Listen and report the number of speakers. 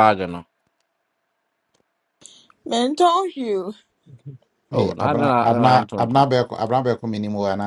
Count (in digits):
3